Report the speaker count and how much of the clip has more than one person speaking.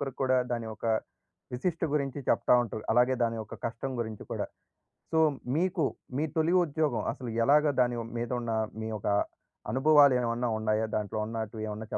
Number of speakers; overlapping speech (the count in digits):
1, no overlap